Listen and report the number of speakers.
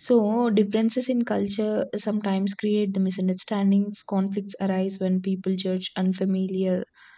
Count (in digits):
1